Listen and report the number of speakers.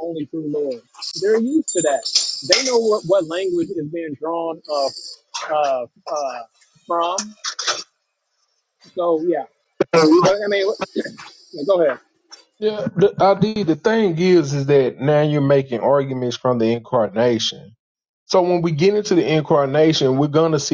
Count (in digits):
2